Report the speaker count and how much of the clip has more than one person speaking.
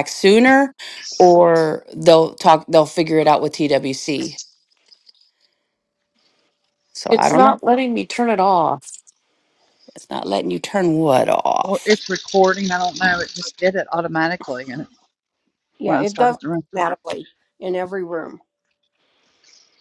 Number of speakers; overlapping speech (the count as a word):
four, about 7%